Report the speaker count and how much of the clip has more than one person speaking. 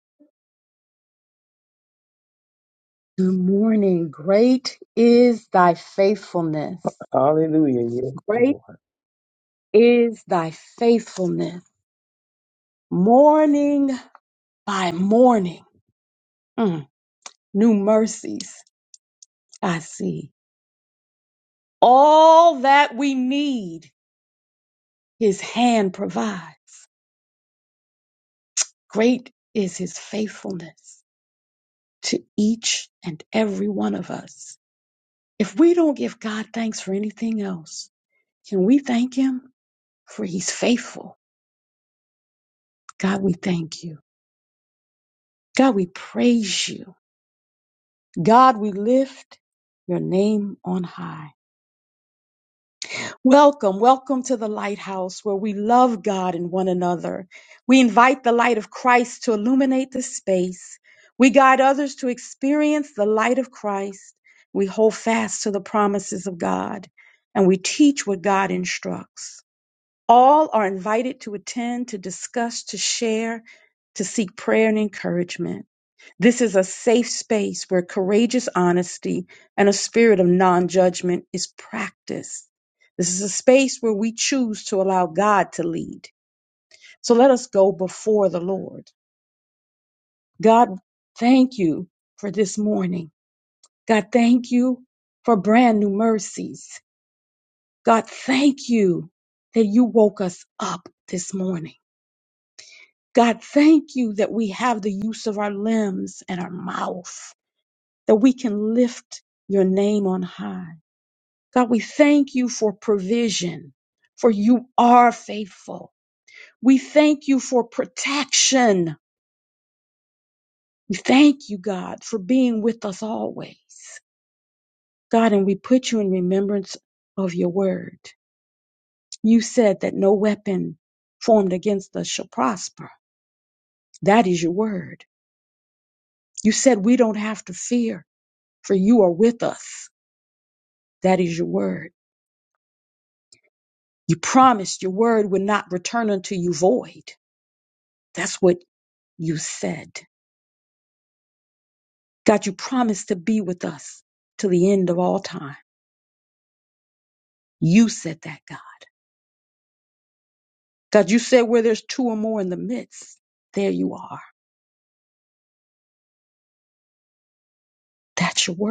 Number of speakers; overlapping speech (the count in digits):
2, under 1%